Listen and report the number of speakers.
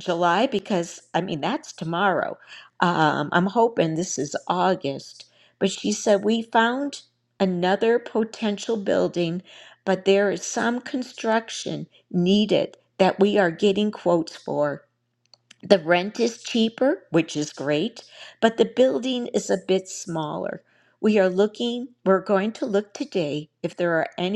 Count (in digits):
1